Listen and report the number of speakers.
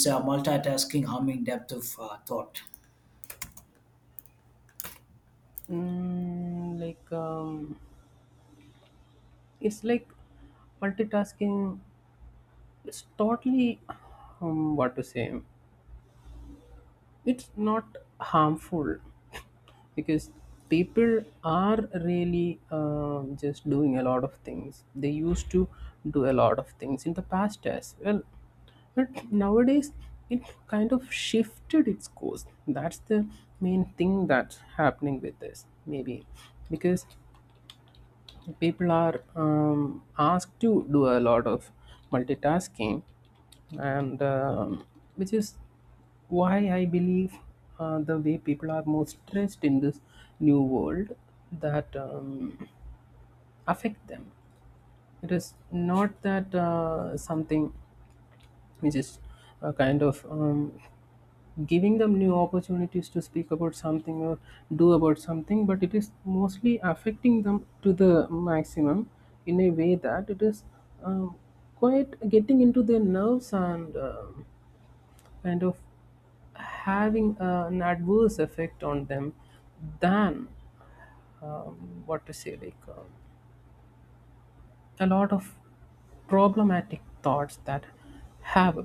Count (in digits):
2